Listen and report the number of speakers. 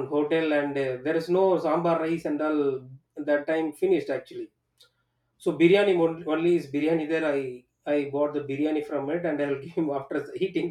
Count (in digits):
1